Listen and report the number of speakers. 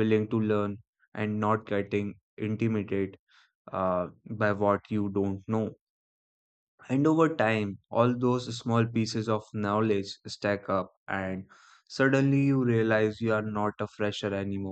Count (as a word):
one